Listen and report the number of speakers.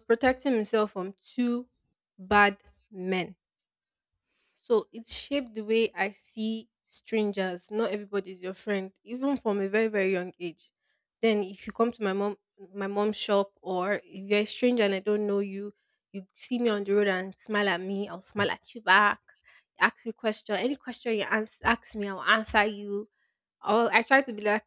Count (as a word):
one